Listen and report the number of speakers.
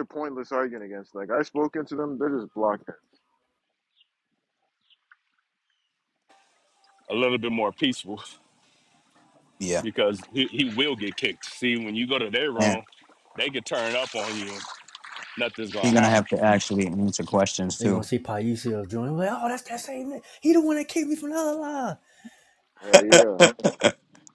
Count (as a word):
four